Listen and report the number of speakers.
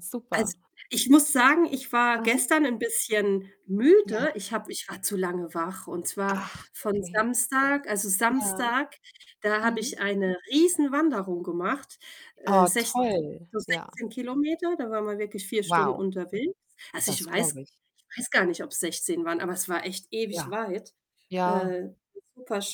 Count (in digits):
2